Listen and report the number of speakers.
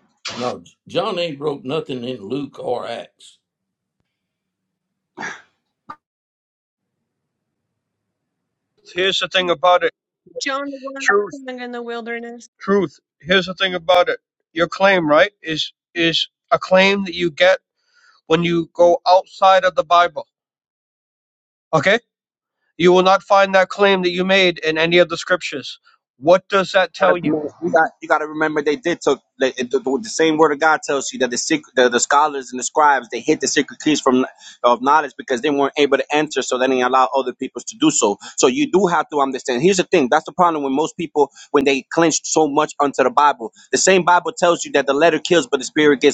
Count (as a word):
four